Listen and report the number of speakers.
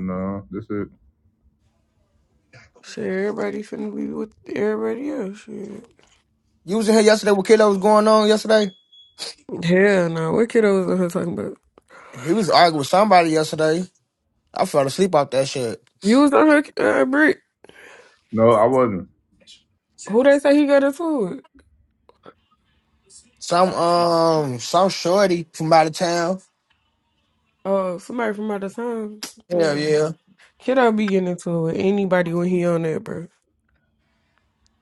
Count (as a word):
three